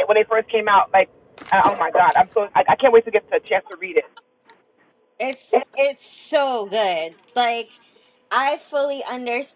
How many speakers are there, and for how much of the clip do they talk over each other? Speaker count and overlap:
2, no overlap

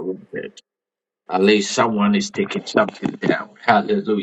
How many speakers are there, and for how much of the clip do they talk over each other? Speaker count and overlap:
1, no overlap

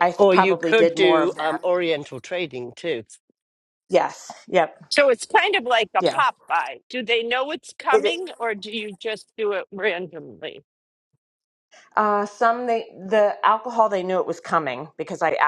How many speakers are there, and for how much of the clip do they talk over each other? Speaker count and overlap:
3, about 11%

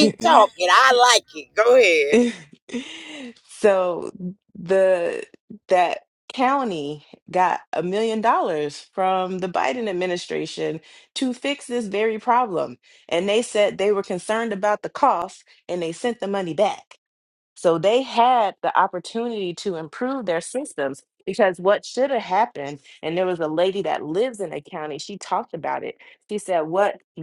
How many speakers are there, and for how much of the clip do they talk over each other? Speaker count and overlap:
2, no overlap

